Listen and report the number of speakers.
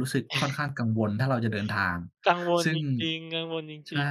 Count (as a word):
two